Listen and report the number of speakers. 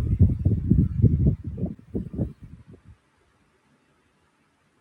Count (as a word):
zero